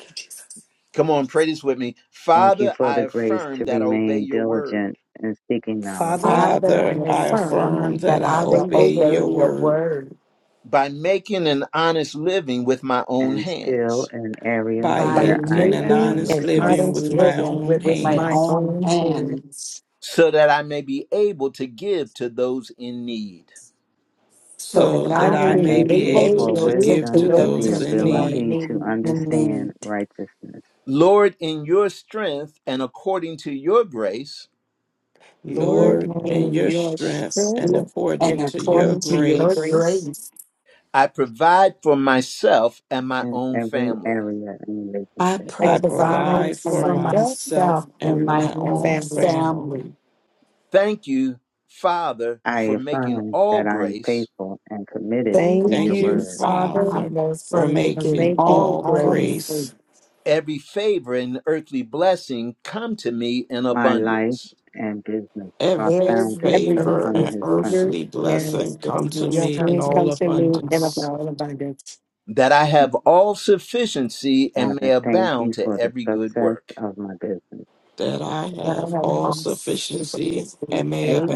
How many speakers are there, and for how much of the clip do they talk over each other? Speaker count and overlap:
5, about 50%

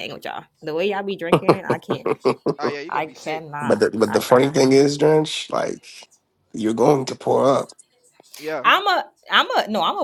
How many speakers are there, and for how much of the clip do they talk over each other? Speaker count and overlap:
3, about 15%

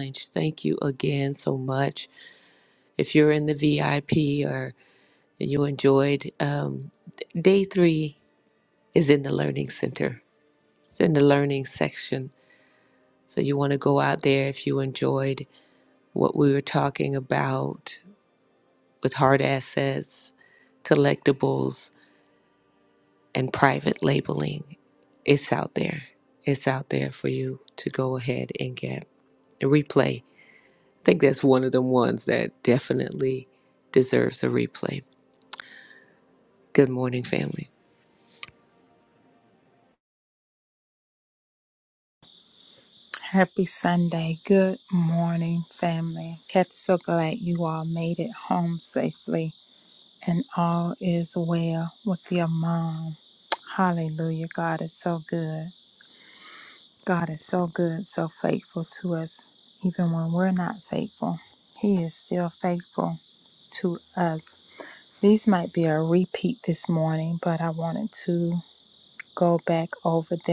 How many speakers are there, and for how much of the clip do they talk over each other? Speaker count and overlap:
2, no overlap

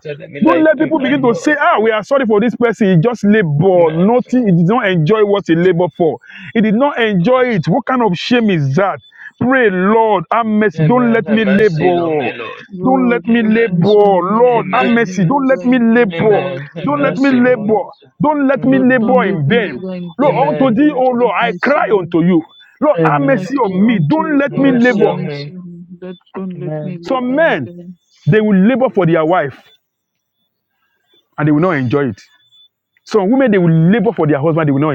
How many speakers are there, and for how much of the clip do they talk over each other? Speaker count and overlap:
3, about 43%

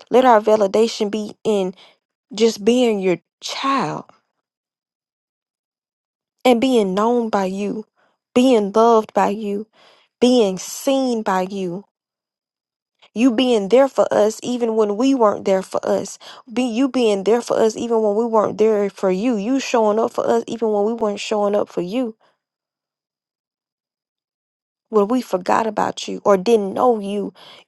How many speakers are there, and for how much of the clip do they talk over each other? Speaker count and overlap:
1, no overlap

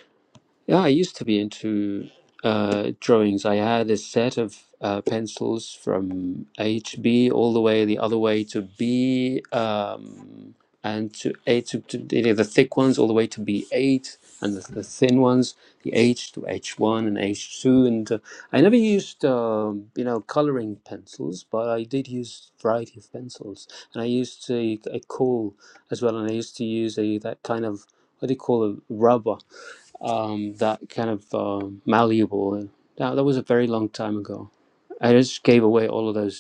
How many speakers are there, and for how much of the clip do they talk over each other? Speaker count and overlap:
1, no overlap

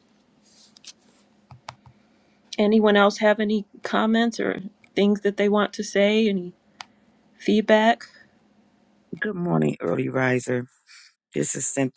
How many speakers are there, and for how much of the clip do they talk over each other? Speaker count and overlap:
2, no overlap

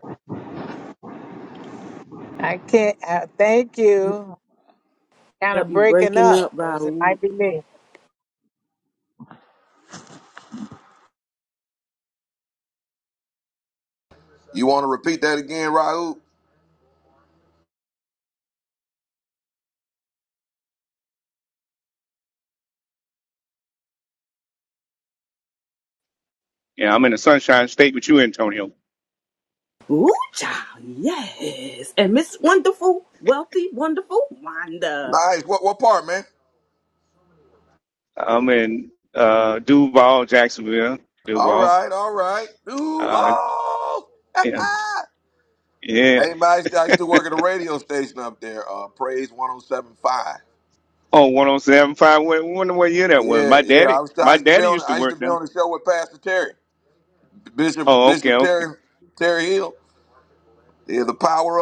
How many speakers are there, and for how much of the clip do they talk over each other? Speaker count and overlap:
4, about 9%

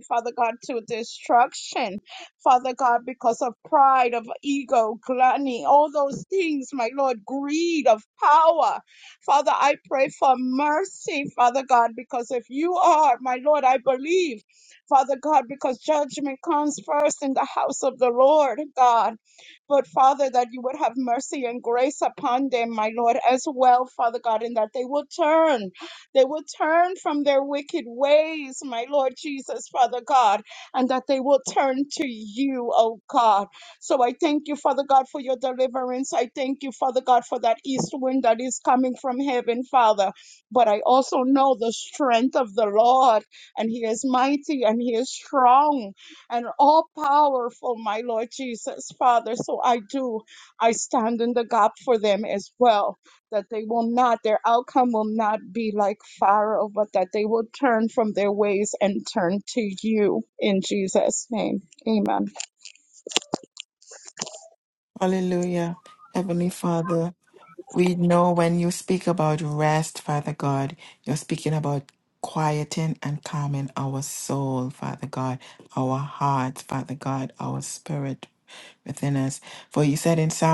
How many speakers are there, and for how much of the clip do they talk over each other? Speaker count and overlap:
2, no overlap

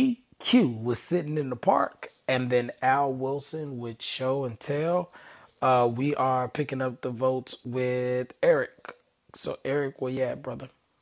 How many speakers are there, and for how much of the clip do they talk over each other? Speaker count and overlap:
1, no overlap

